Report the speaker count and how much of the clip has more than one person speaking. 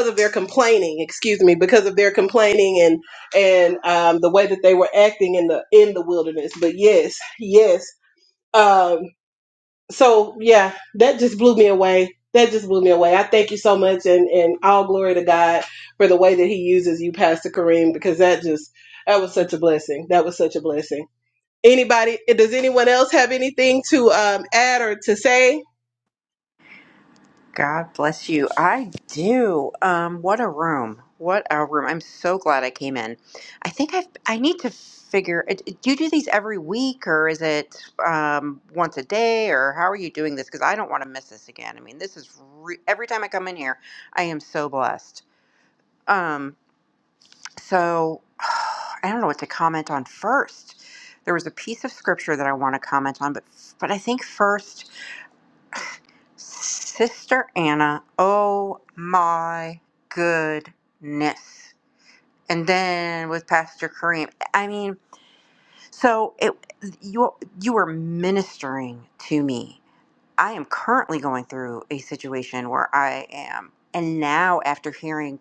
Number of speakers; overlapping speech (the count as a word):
two, no overlap